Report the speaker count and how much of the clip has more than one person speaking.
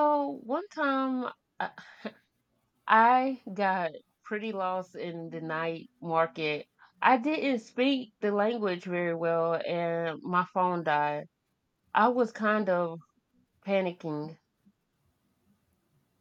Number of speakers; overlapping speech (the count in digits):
1, no overlap